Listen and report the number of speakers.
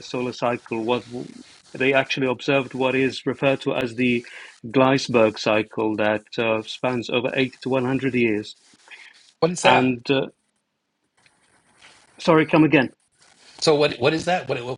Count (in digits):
2